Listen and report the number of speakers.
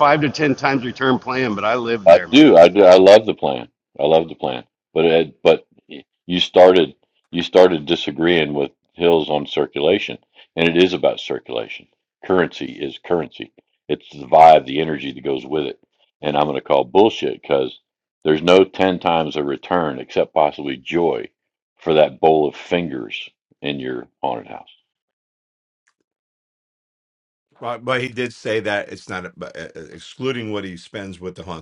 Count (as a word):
three